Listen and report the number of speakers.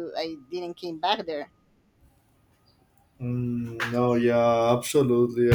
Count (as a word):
two